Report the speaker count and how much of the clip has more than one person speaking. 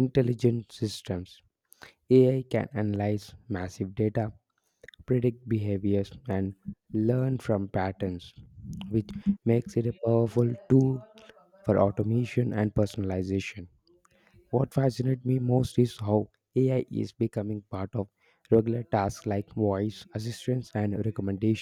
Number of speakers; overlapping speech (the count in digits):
1, no overlap